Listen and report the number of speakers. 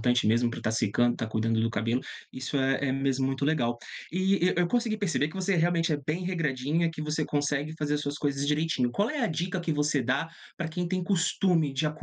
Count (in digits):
1